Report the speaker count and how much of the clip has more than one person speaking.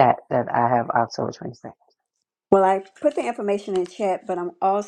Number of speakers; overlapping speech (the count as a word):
two, no overlap